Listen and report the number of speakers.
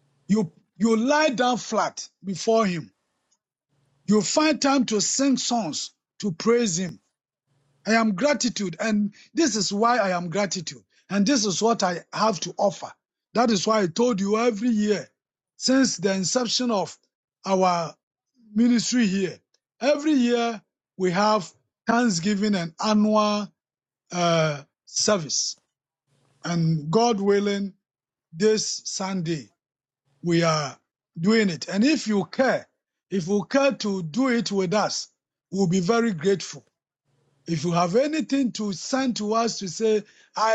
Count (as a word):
one